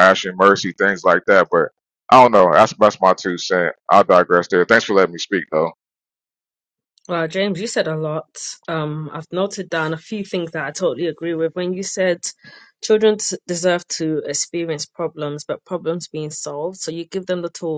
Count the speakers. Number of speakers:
2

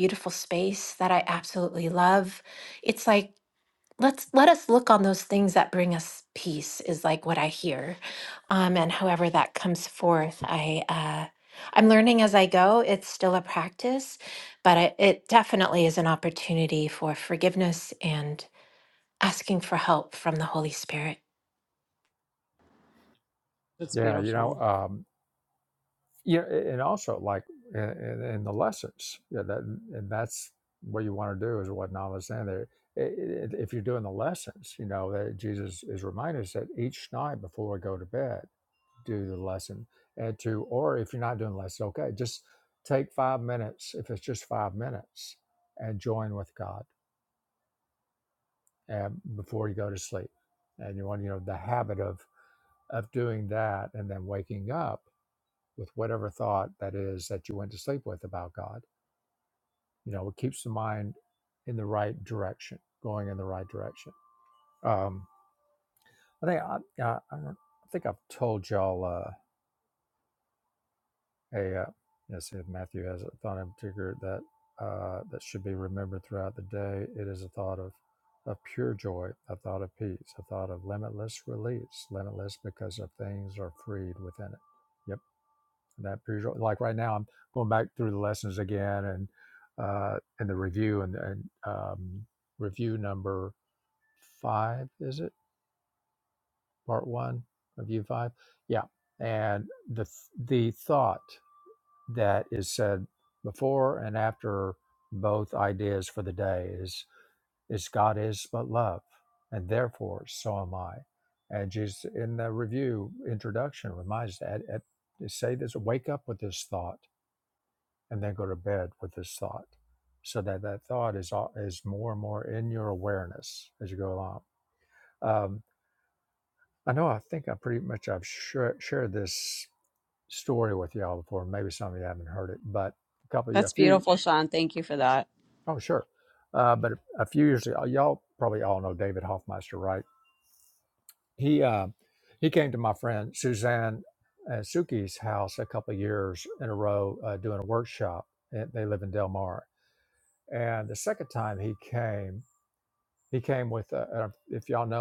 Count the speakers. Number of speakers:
3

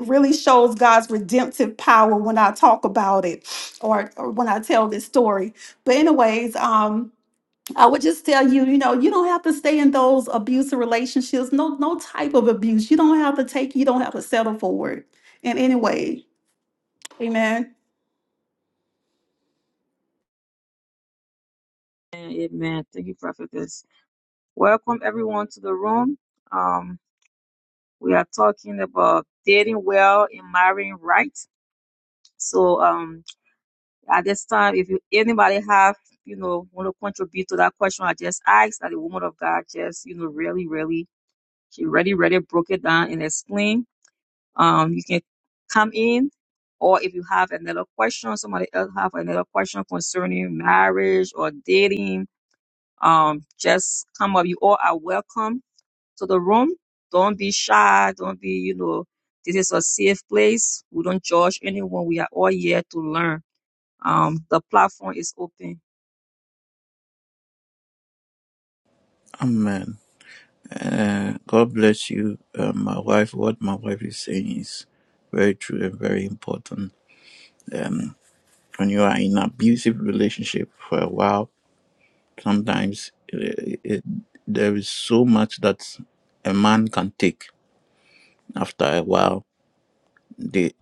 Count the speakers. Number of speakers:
3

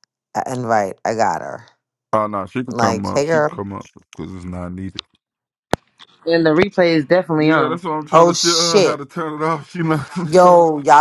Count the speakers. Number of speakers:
3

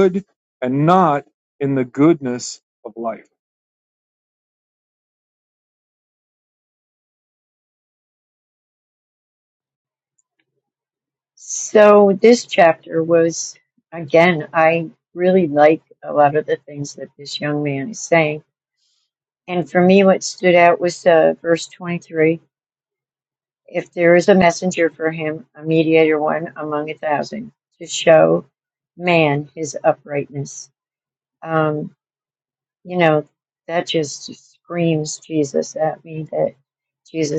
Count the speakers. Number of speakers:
2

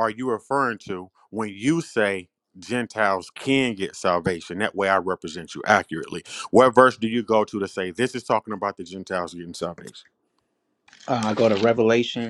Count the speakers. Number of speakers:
2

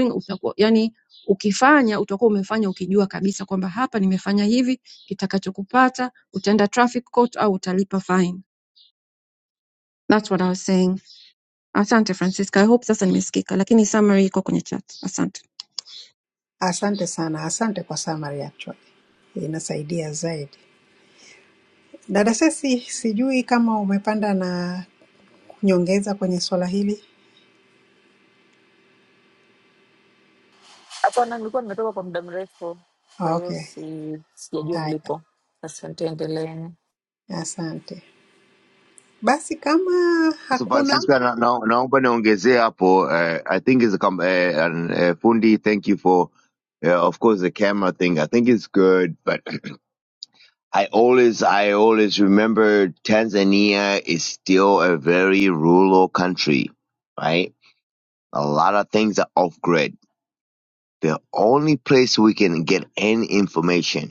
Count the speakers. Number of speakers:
4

